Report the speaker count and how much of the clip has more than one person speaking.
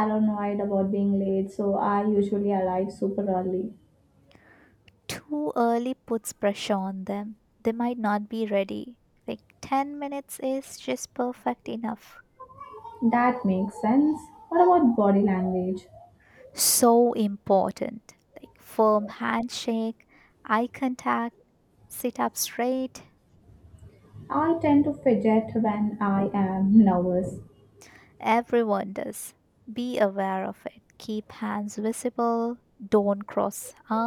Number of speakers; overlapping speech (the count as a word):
two, no overlap